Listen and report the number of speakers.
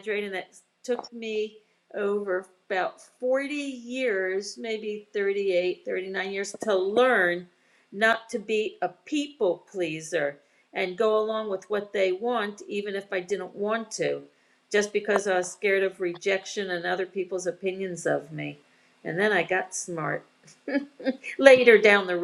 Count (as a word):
one